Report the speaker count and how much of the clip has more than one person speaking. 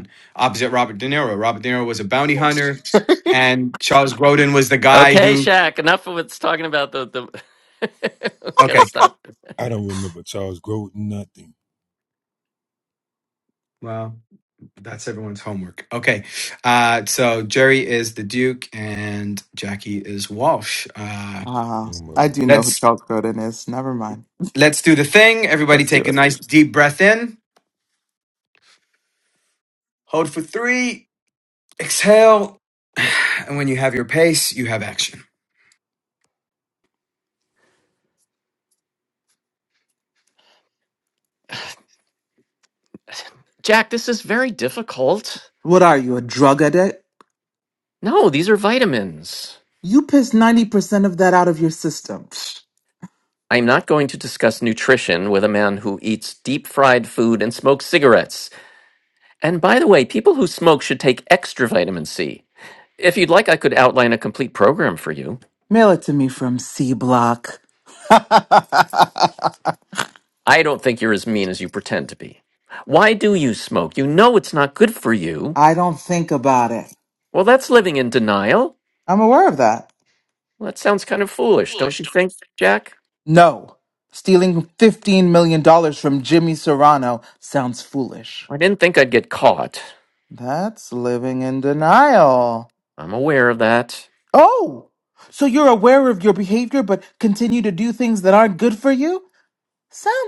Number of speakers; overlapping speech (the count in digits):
4, about 2%